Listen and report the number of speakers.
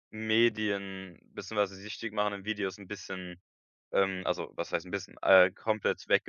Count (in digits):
1